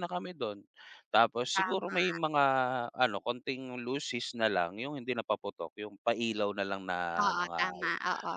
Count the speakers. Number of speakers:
2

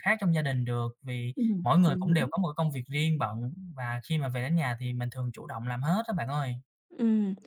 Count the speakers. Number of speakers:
2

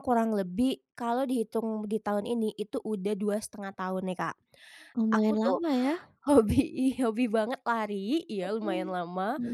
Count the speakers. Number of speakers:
2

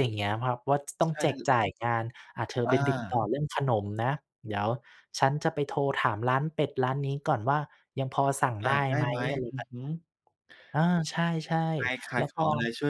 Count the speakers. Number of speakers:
2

